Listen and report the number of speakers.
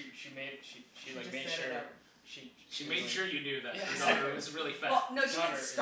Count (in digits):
3